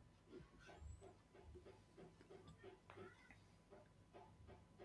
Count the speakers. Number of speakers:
0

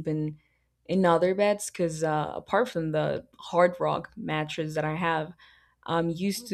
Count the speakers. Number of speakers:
1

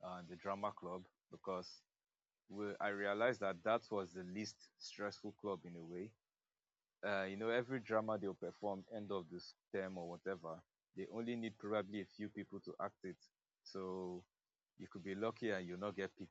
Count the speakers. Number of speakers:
1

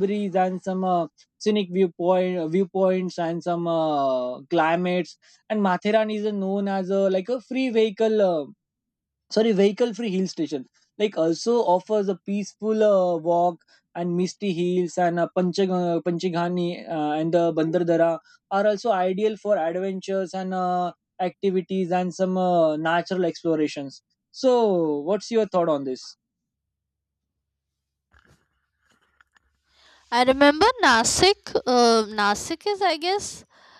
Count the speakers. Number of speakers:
2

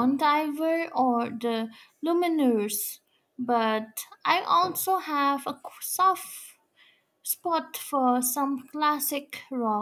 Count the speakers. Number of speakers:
1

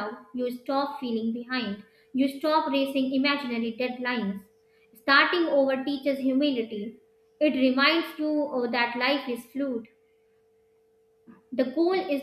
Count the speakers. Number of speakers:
1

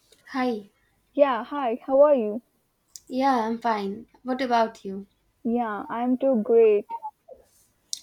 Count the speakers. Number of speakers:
2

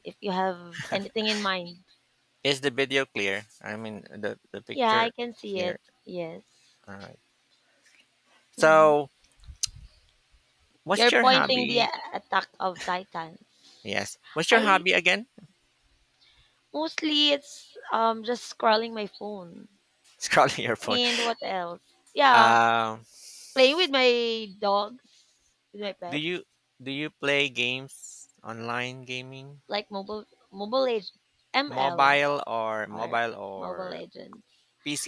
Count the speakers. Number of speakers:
2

